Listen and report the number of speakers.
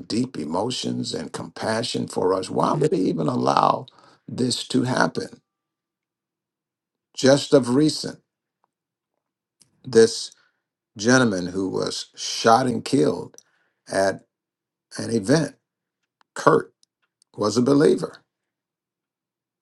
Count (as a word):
one